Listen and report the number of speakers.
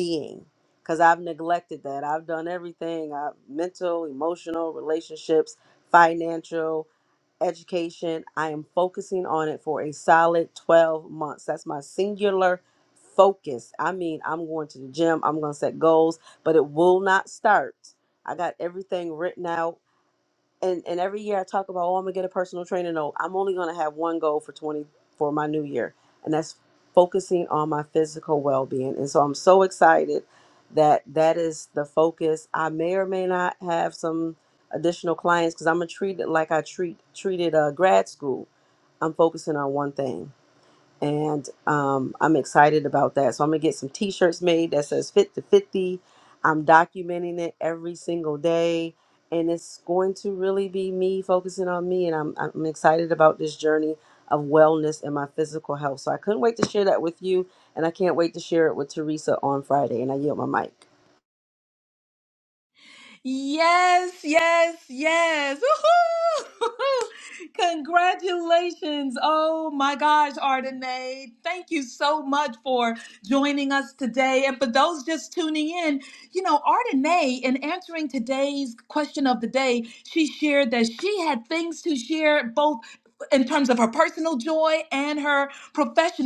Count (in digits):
2